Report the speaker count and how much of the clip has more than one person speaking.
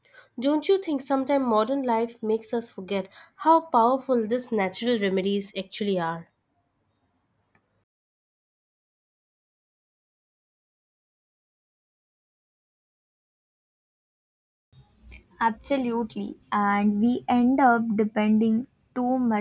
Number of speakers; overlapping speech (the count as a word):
two, no overlap